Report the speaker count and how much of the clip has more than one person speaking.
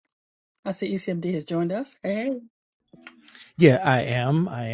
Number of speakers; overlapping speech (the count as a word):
two, no overlap